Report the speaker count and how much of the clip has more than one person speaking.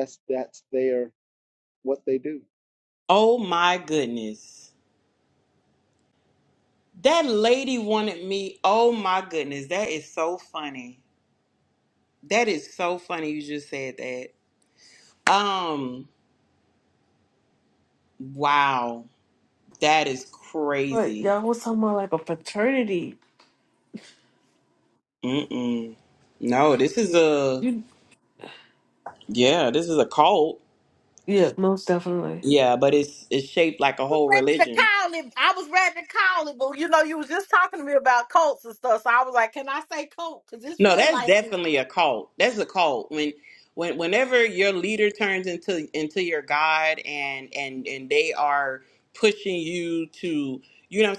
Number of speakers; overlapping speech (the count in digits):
4, about 3%